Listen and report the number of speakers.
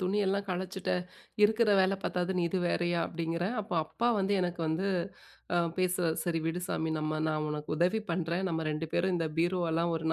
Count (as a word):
one